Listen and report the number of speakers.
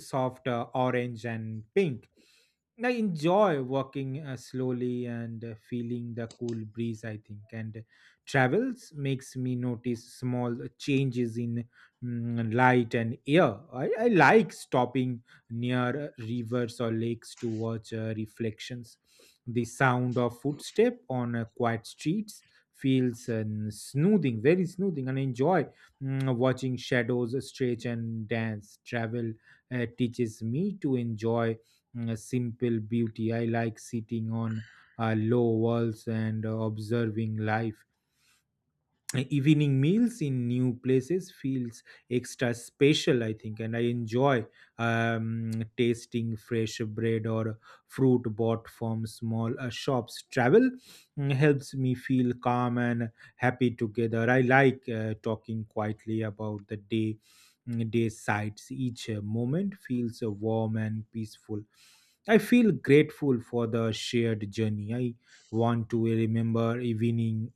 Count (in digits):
1